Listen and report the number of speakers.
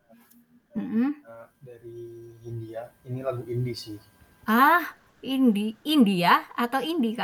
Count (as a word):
two